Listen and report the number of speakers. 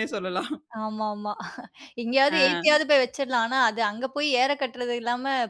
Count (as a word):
two